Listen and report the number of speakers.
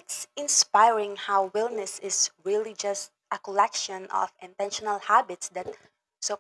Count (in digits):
1